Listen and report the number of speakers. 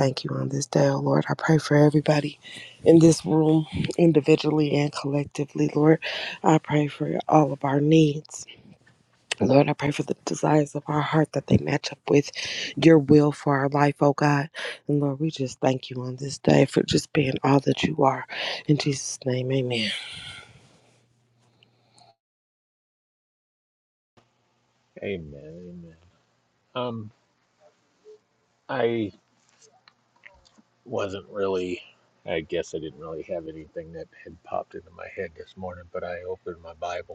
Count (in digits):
2